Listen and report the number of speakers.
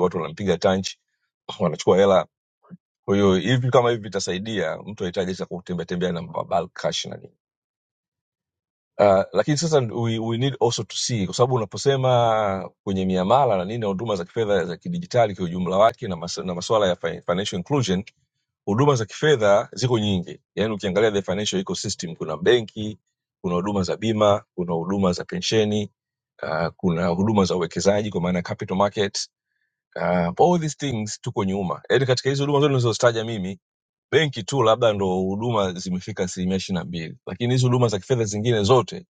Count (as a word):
one